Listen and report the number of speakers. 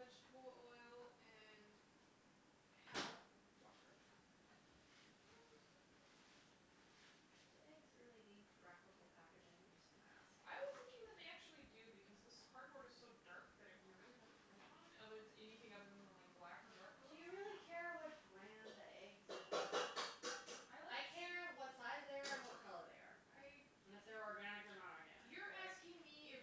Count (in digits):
2